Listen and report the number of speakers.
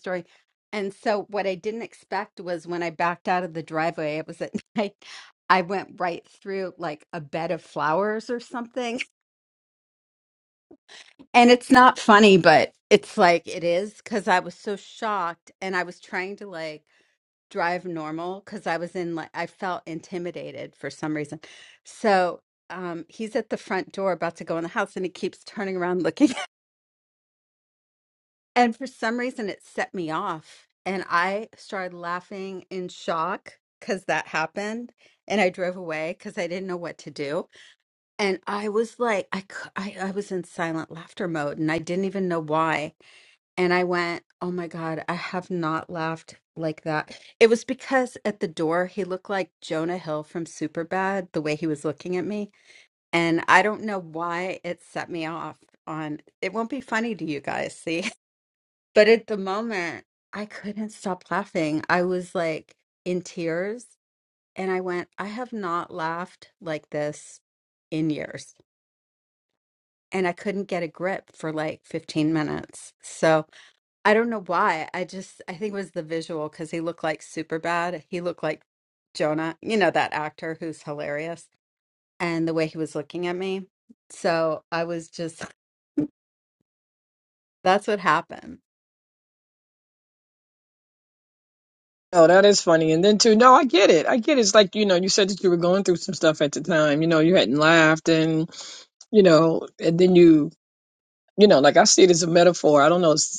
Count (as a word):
two